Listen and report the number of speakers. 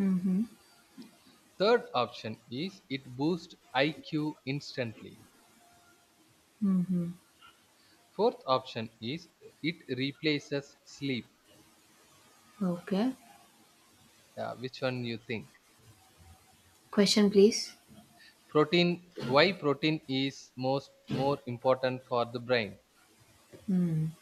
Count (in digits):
2